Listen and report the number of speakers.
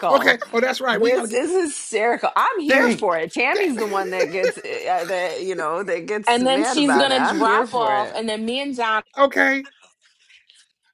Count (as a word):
three